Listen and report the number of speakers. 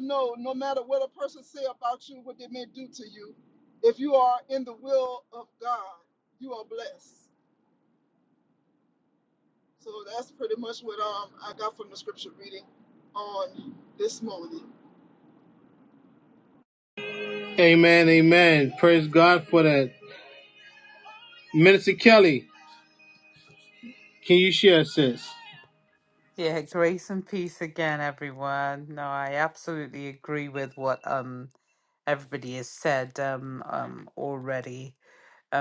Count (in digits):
3